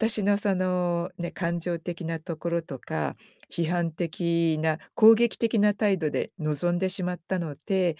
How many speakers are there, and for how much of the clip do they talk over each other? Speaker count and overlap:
one, no overlap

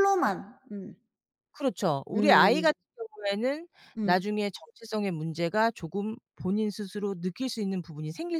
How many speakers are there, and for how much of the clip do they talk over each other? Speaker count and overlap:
two, about 8%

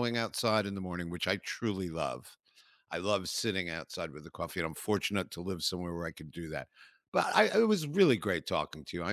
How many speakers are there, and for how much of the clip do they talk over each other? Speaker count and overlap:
one, no overlap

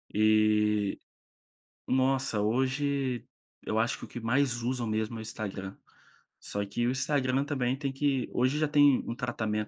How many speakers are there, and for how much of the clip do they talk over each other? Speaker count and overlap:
one, no overlap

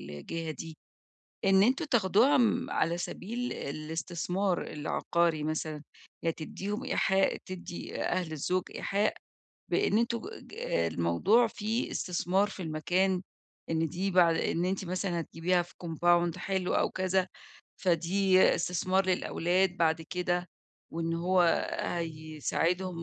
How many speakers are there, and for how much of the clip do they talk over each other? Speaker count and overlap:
one, no overlap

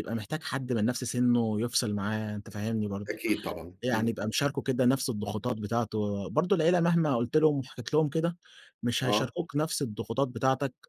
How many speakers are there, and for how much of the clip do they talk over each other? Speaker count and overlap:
two, about 6%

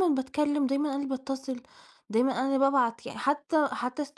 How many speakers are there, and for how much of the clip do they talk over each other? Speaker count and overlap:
one, no overlap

